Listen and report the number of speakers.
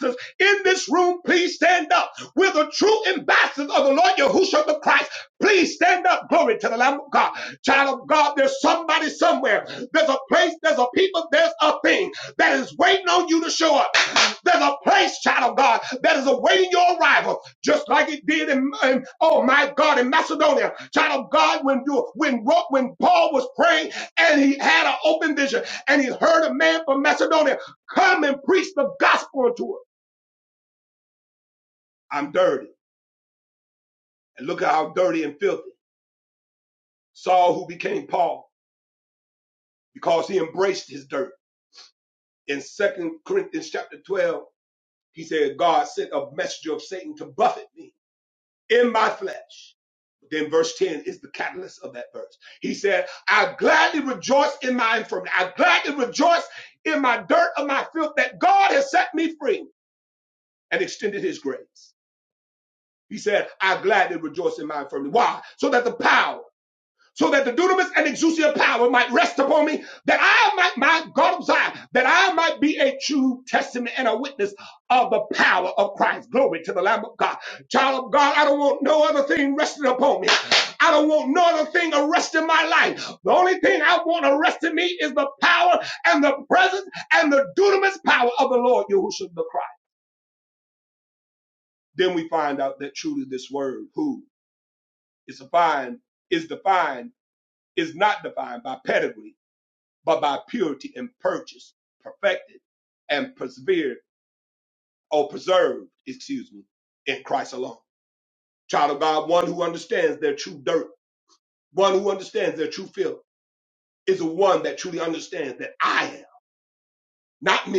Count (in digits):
1